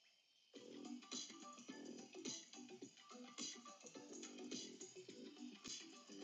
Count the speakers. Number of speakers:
zero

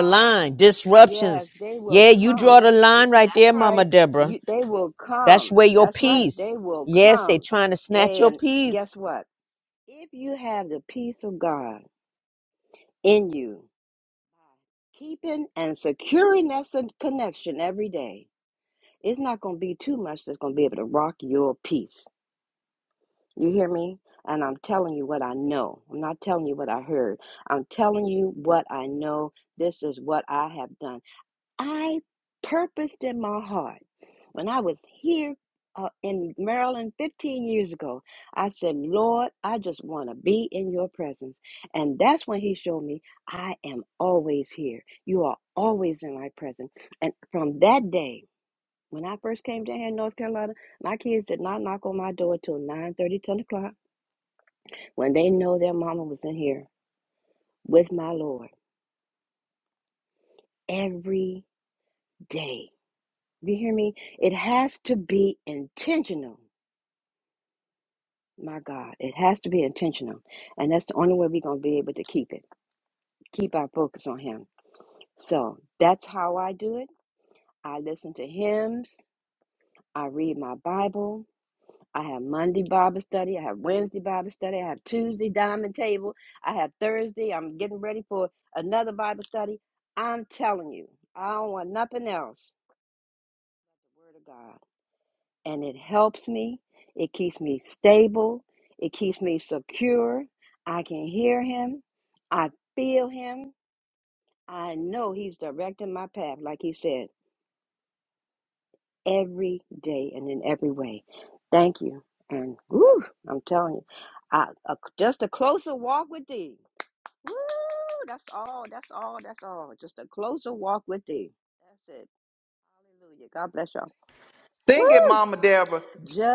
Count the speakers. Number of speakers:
three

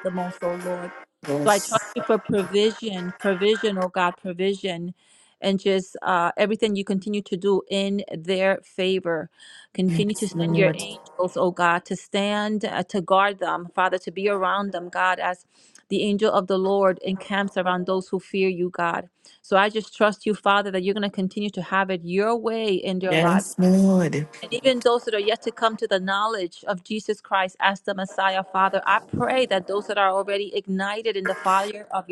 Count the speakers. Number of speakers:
two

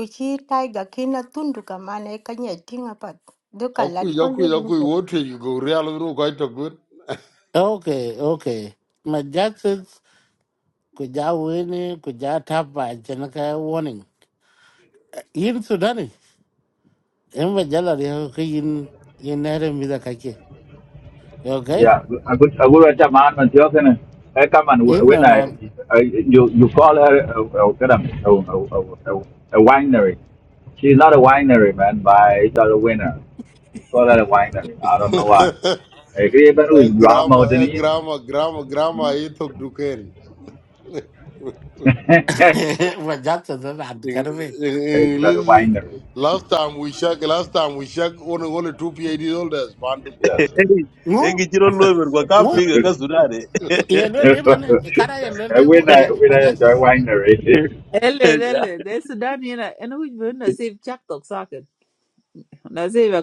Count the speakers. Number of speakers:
six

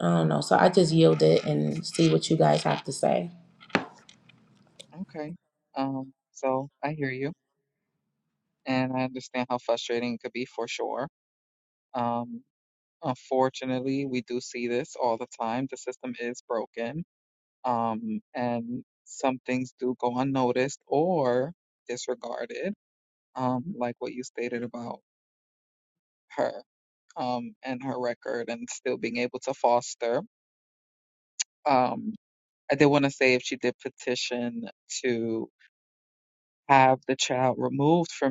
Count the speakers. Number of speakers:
two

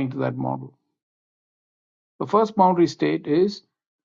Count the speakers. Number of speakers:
one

